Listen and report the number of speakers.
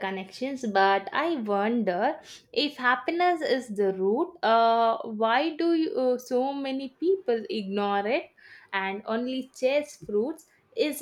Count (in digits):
1